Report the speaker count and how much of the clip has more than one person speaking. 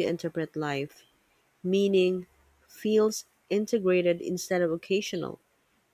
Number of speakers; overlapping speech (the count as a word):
one, no overlap